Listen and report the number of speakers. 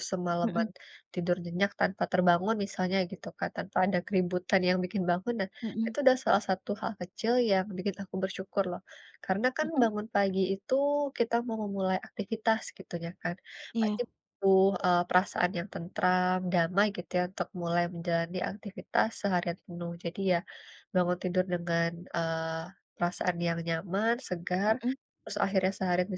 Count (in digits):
2